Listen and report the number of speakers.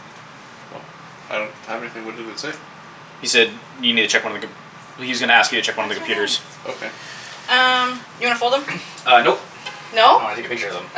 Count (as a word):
three